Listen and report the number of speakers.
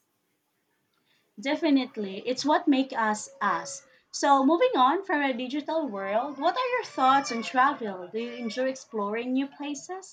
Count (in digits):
1